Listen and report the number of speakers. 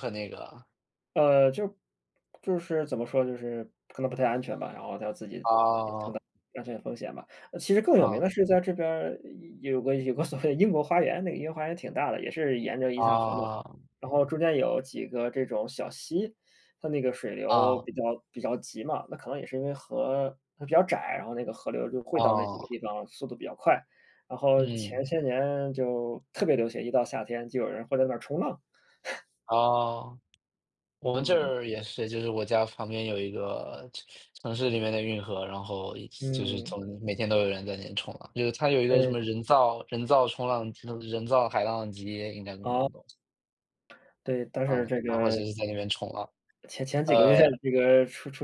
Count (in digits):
2